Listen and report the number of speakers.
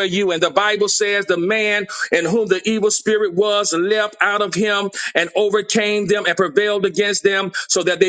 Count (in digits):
1